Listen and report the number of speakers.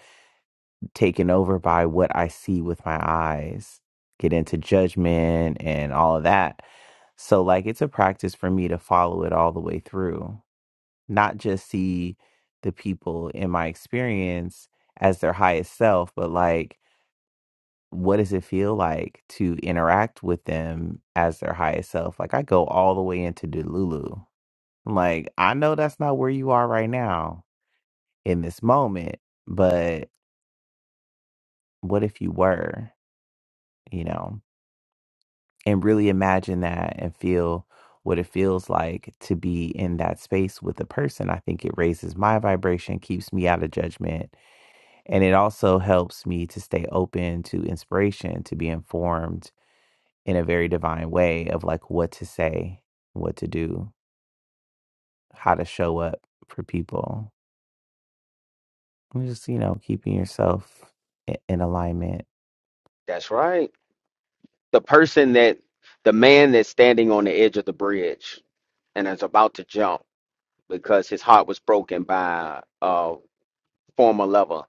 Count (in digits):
2